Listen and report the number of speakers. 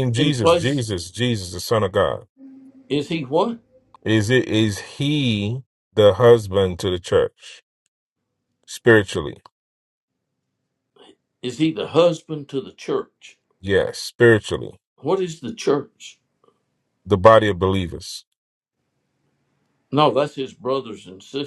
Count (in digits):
2